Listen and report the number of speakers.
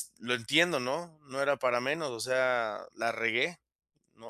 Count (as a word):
one